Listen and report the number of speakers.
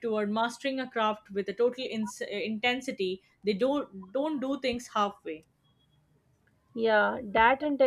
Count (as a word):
two